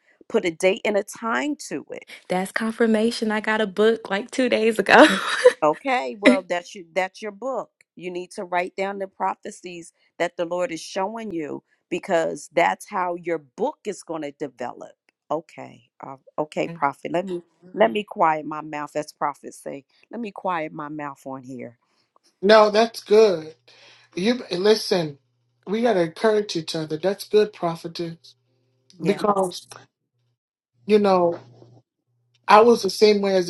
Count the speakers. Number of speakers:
three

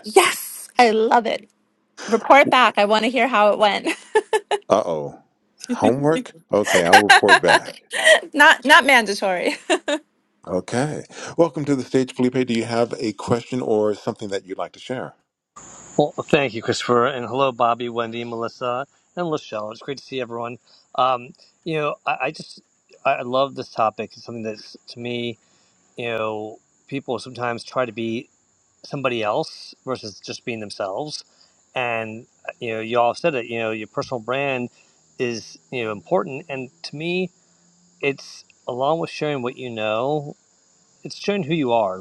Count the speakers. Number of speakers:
three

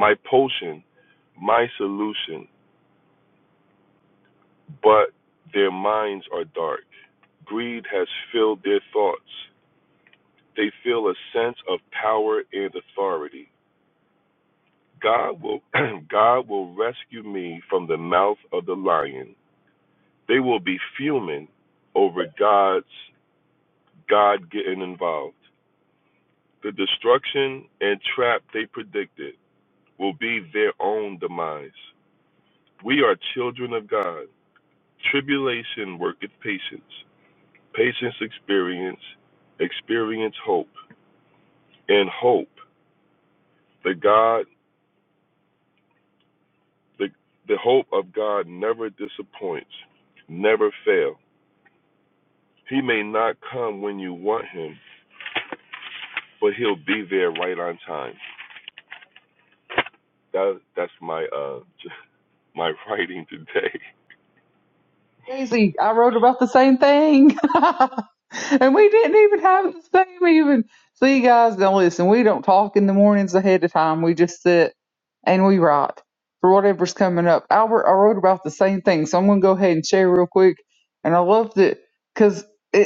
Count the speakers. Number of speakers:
two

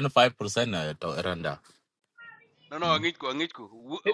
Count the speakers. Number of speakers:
two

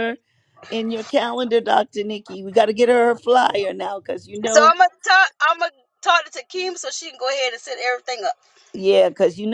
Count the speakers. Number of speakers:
two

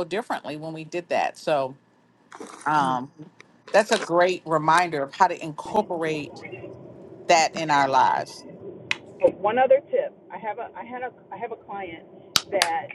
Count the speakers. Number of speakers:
two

